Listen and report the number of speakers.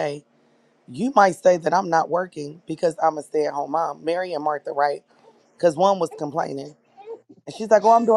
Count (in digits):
1